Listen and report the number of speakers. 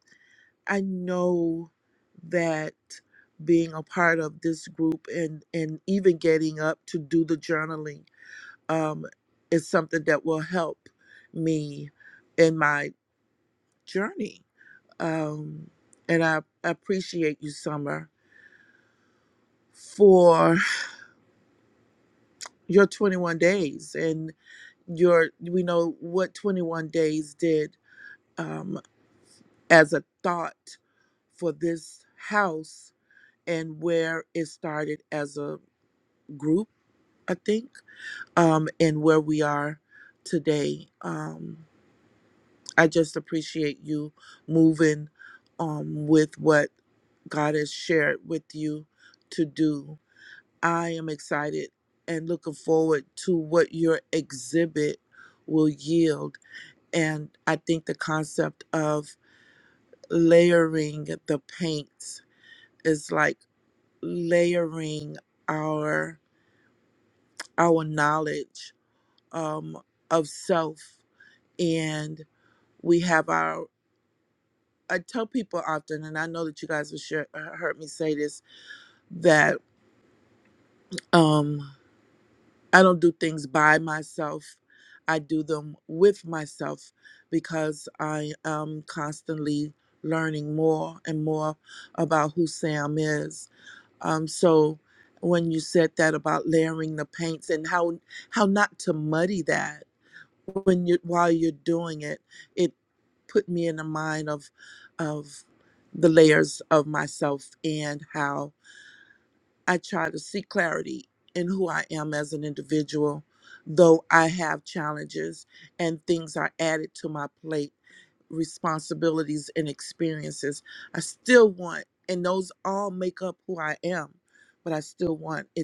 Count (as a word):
one